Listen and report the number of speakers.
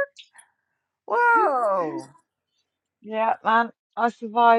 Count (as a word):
two